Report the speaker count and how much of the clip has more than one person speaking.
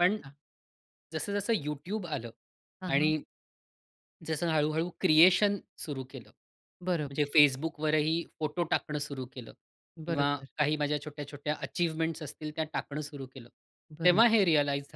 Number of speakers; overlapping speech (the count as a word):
two, about 7%